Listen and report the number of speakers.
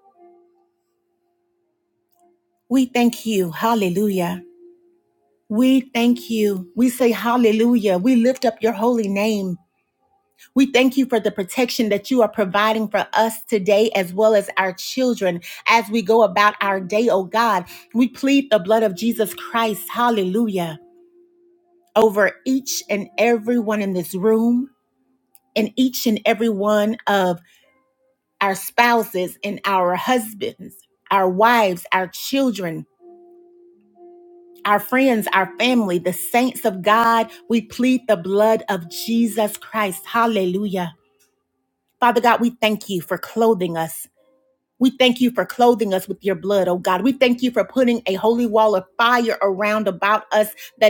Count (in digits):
1